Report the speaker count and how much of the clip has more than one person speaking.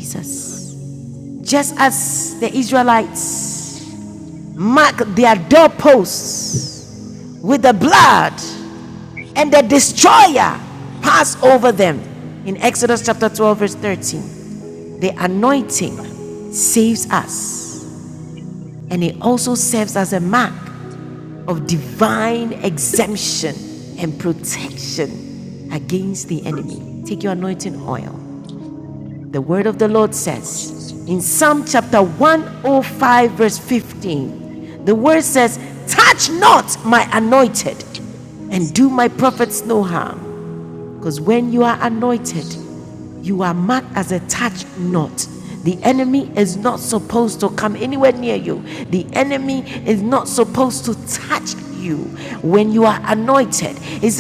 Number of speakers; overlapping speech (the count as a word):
one, no overlap